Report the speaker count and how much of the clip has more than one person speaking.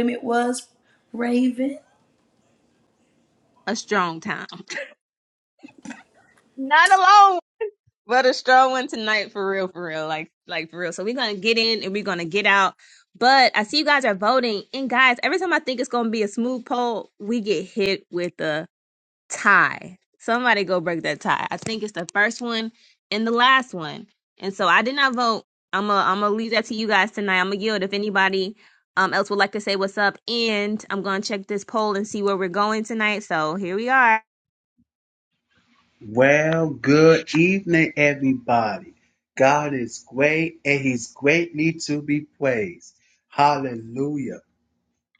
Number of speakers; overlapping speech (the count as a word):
three, no overlap